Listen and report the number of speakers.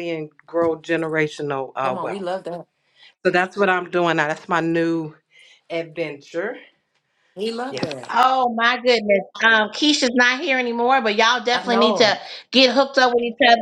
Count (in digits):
3